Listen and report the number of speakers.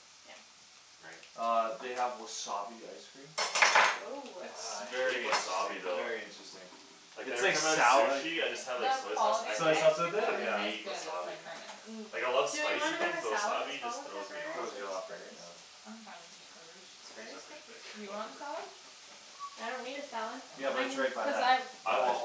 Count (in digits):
4